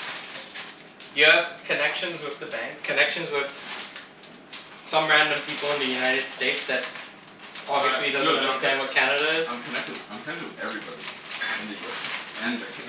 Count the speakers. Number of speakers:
two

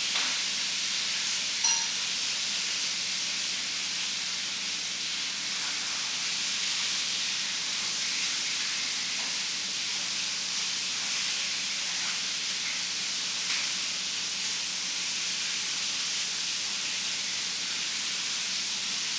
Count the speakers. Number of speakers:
zero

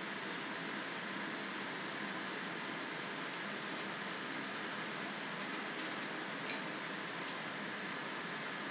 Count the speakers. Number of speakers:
zero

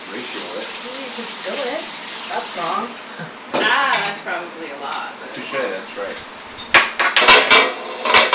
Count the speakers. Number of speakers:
three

